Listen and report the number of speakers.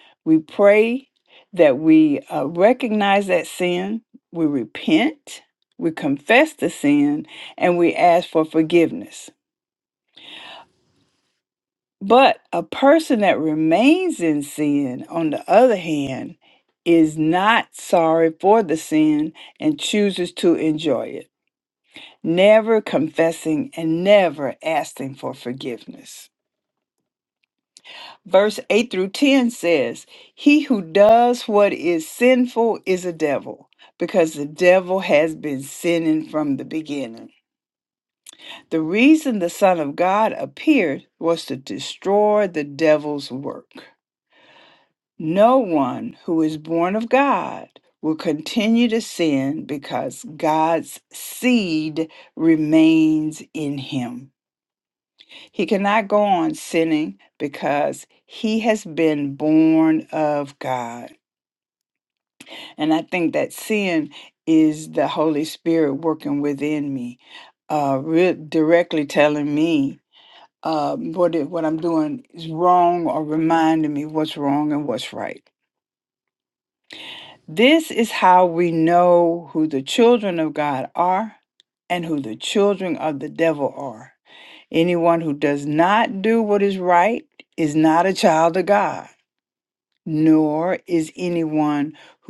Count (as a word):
one